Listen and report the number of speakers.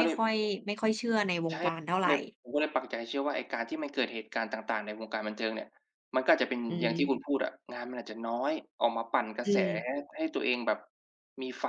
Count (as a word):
two